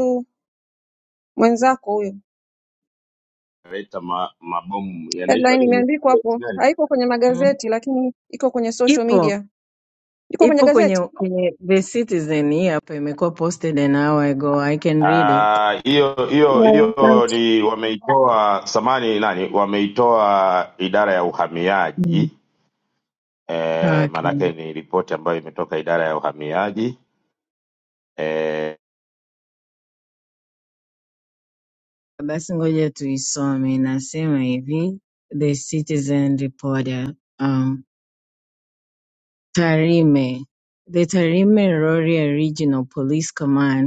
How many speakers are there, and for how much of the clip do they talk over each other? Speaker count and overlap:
three, about 9%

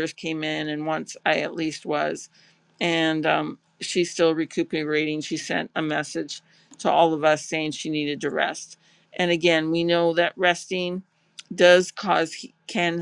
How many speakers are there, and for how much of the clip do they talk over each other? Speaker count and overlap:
one, no overlap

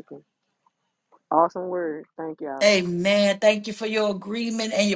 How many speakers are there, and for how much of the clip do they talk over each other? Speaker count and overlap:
two, about 1%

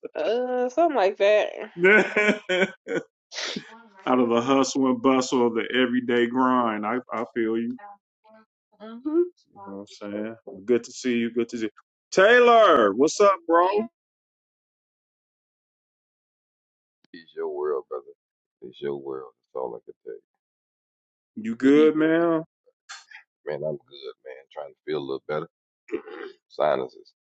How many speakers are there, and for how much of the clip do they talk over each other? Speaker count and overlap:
three, about 2%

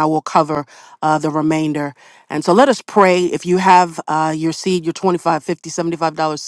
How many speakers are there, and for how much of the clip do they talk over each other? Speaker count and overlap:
one, no overlap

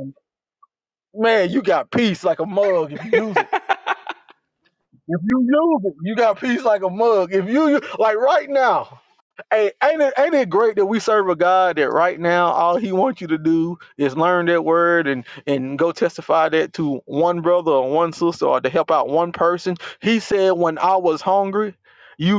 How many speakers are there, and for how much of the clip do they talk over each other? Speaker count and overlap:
one, no overlap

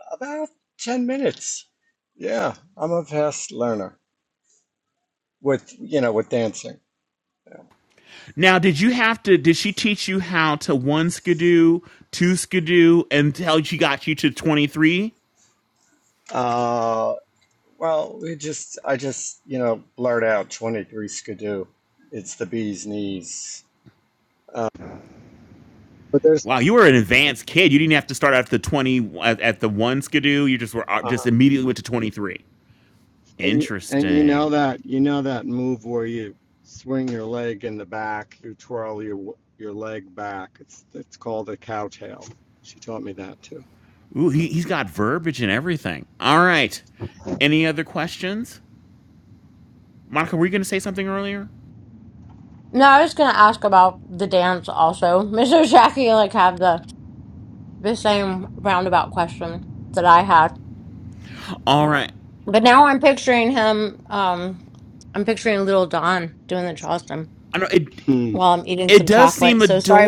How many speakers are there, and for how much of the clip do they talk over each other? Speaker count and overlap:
three, about 4%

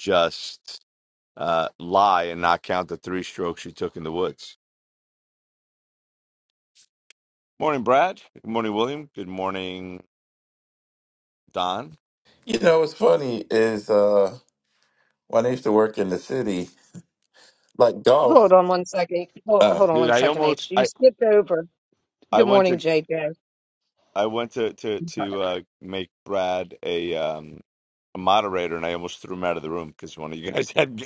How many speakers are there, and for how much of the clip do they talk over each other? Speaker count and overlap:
three, about 7%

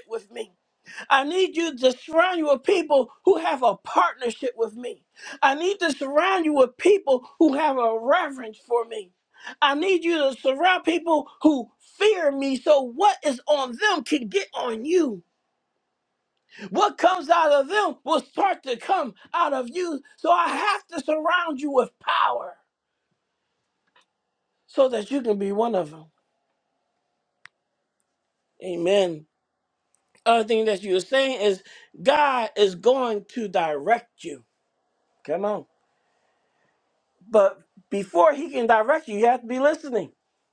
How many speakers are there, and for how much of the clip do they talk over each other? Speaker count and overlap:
one, no overlap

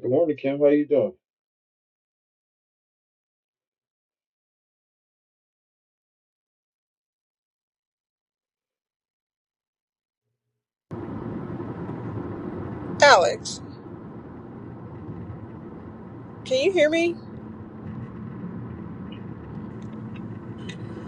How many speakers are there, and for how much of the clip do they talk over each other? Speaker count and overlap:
two, no overlap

